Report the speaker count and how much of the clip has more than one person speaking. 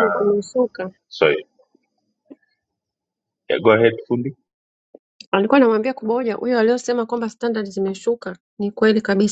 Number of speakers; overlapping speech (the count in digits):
2, about 2%